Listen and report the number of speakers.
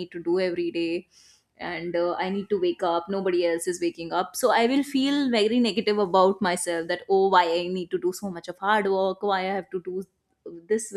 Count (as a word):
one